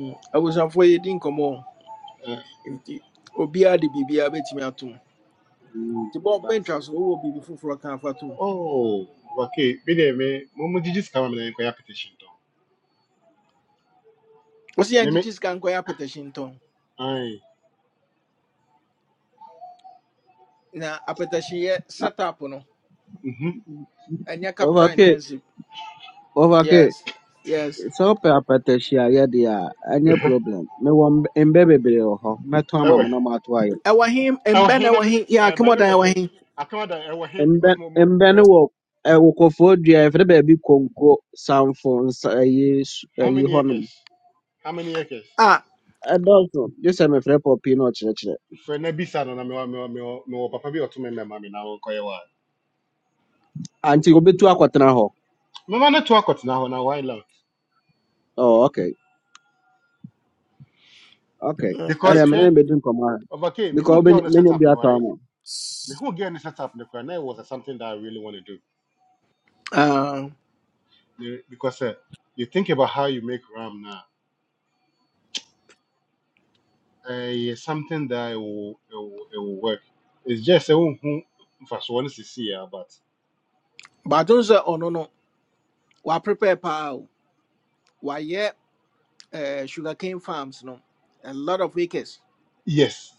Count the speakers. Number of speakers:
three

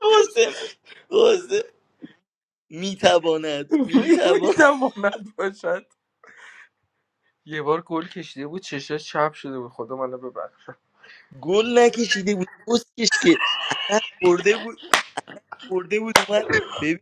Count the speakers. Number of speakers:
two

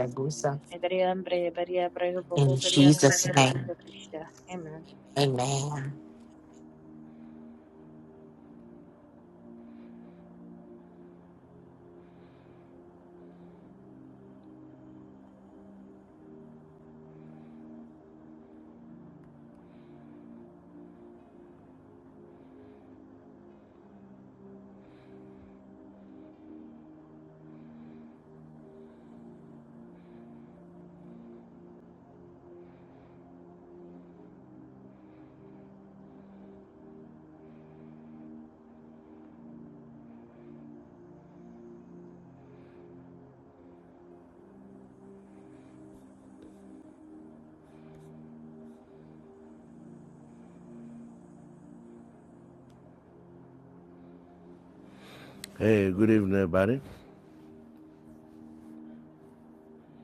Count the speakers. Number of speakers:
three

